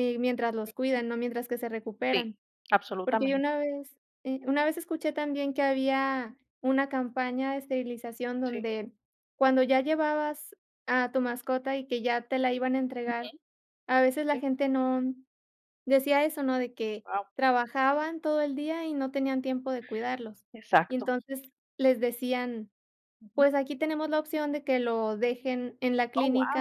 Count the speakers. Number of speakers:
two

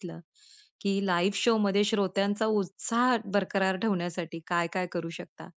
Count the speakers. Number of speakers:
one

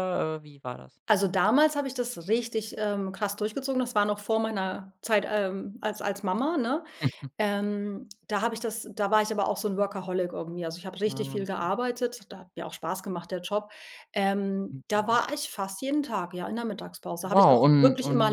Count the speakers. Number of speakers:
two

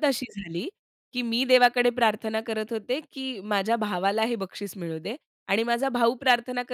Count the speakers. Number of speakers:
one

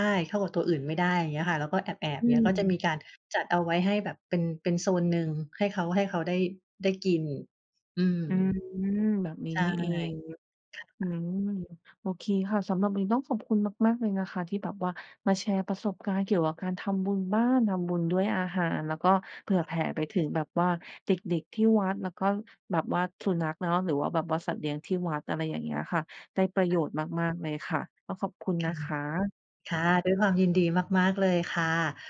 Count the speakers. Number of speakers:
two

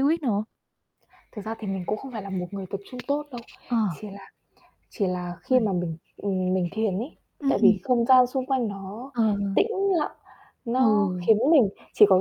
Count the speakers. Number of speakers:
two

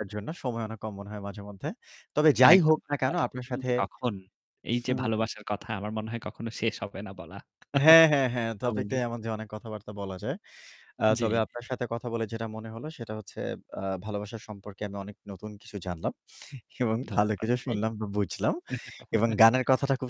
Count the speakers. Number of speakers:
two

